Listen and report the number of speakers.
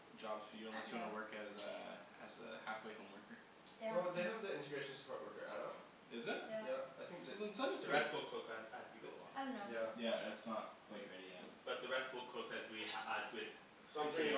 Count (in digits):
4